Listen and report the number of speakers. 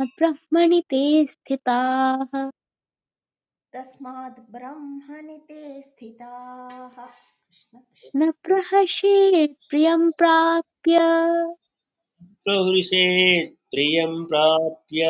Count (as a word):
three